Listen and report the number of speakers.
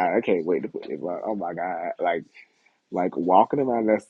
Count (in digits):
1